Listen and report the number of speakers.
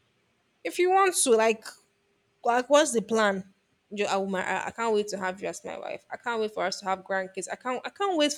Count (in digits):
1